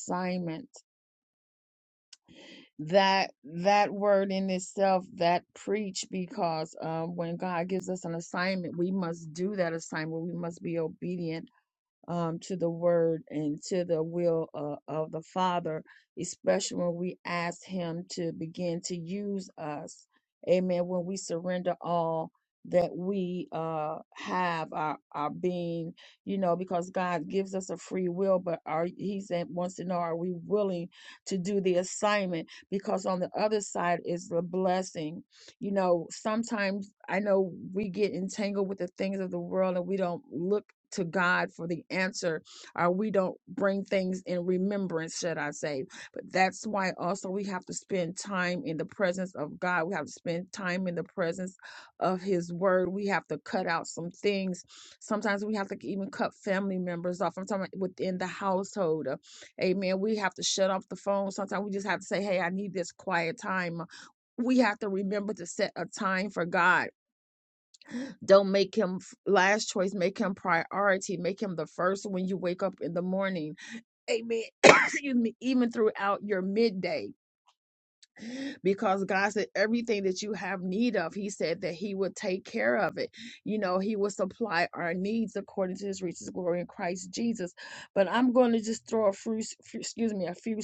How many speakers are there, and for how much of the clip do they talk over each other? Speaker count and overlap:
1, no overlap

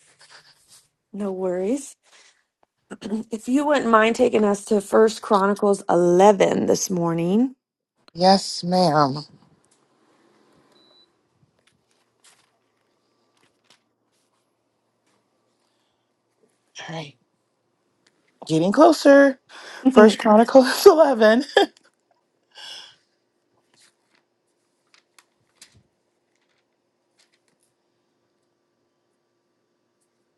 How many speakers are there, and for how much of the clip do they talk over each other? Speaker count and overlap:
2, about 1%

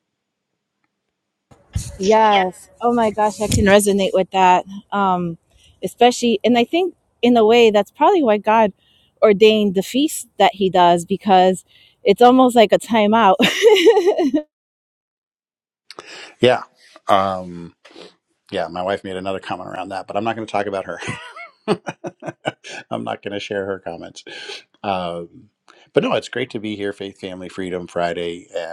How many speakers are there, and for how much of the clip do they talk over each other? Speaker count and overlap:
2, no overlap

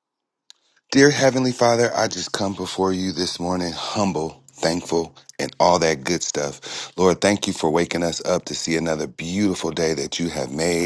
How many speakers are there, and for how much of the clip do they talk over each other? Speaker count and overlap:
1, no overlap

